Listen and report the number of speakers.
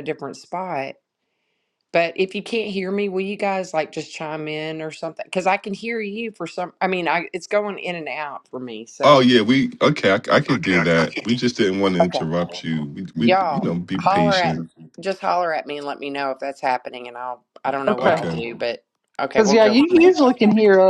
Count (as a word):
three